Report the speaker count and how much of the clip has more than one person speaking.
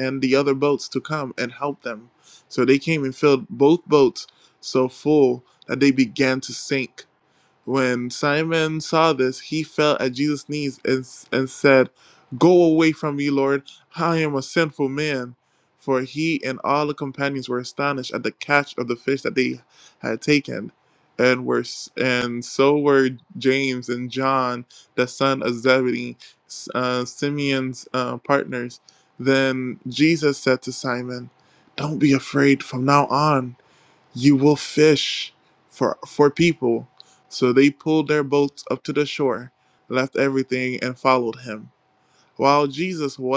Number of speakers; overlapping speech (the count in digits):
1, no overlap